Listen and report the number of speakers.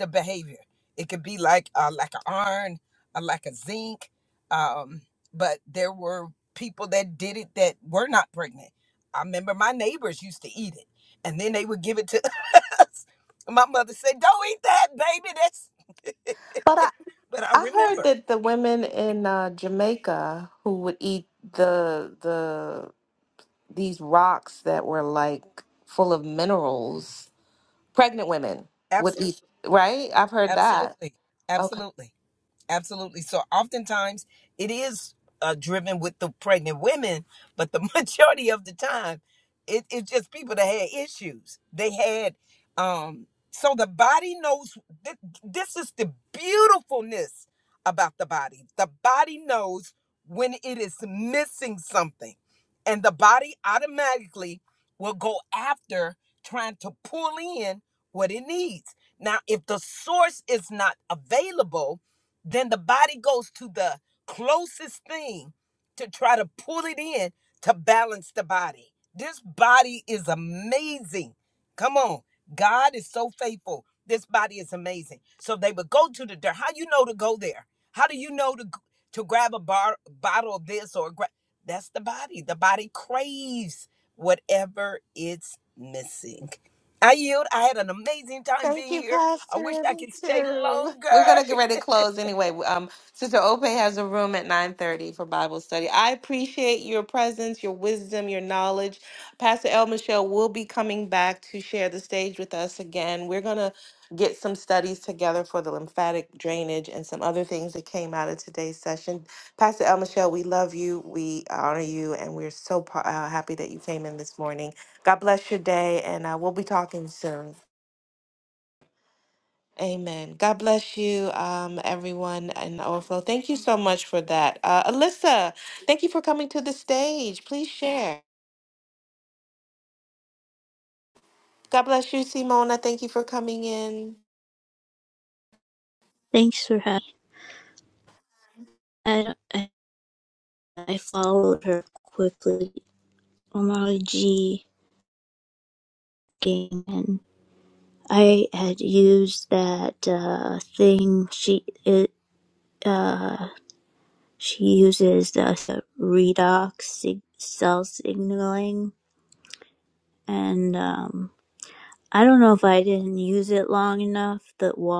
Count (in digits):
3